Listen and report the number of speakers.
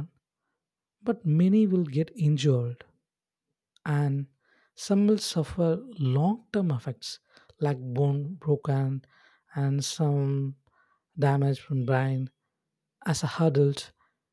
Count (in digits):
1